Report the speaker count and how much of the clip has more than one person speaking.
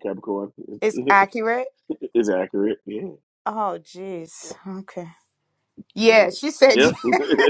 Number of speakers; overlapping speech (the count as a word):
two, about 9%